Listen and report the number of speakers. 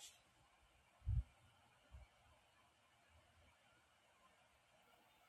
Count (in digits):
0